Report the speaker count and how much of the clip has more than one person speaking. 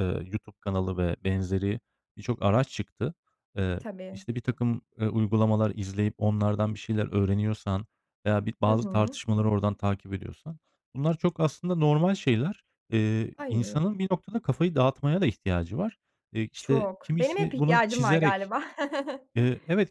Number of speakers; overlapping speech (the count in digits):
2, about 15%